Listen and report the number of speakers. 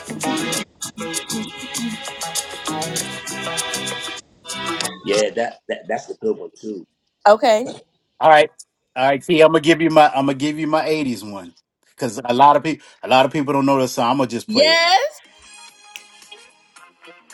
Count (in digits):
3